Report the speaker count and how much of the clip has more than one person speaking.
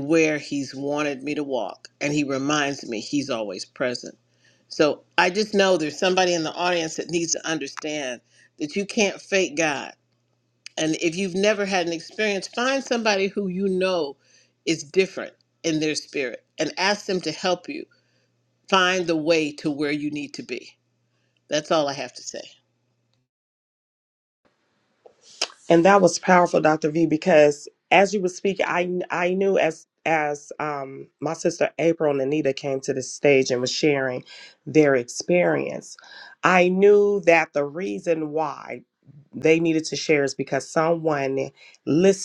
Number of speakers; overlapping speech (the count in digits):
2, no overlap